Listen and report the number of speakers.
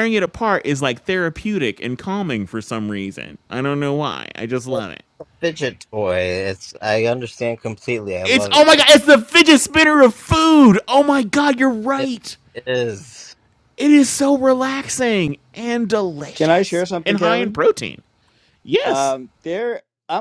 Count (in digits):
3